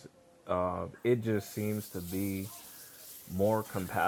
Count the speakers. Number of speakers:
1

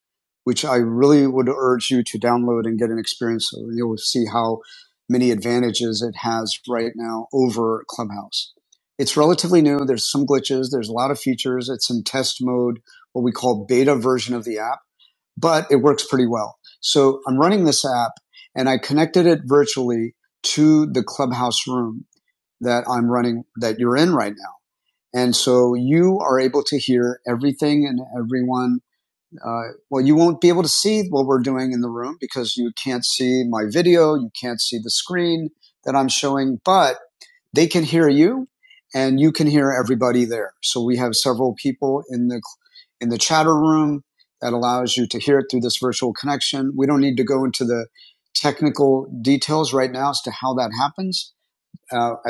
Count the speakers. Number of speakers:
1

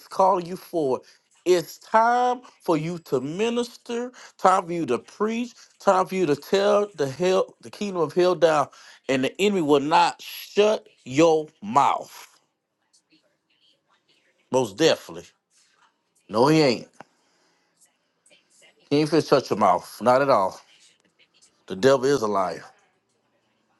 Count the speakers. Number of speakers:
1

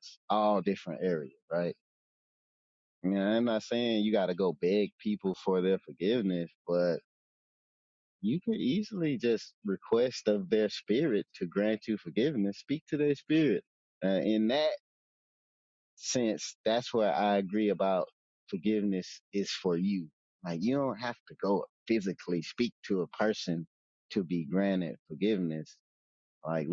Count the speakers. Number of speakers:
1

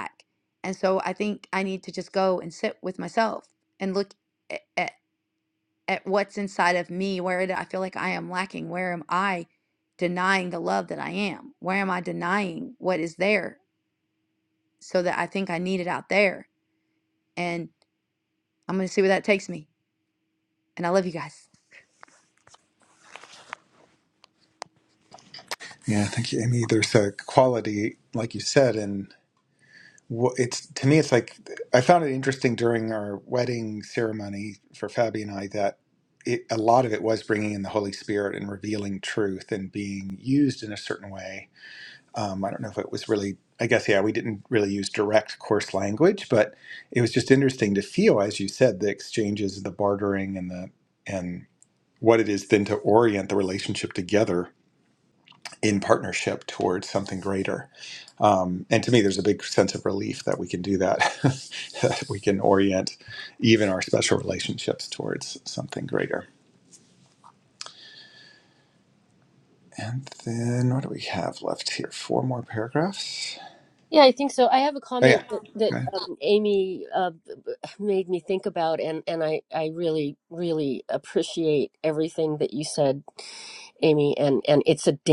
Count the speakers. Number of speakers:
3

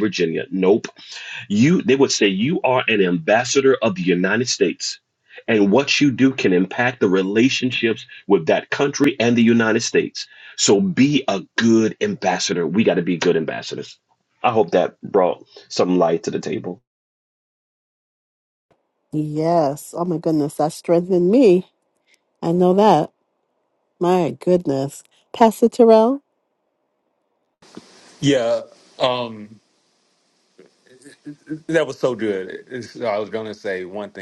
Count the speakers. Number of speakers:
3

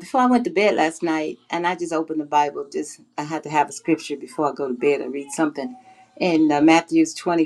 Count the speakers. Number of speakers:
1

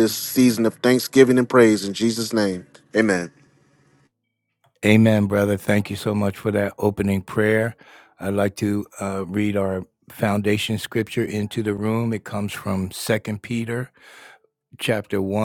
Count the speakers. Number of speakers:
2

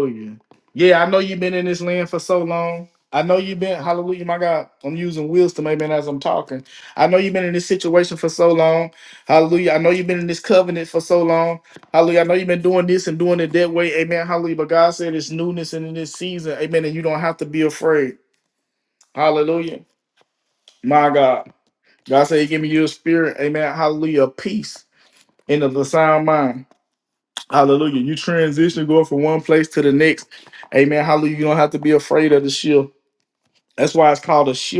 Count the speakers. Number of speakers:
1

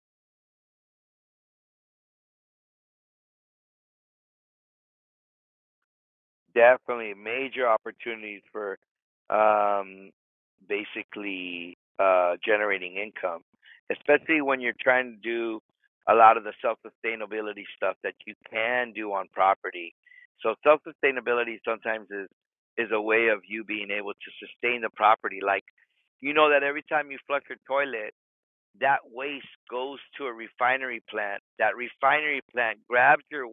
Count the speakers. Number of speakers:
1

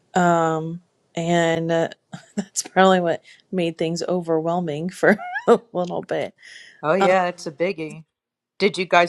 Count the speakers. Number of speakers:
2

